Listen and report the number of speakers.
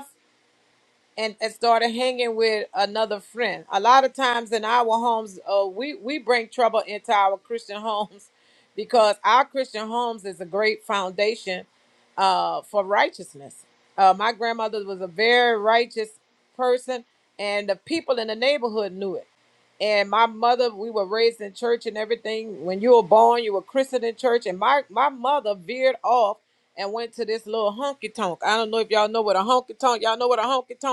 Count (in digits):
1